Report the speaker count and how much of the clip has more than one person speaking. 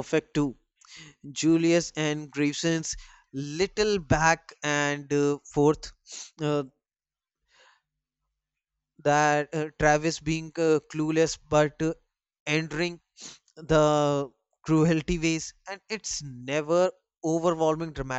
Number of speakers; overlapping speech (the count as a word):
one, no overlap